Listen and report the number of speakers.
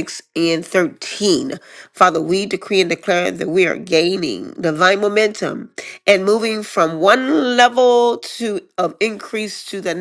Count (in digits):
1